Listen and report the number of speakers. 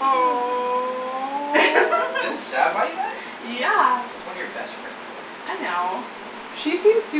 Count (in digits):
3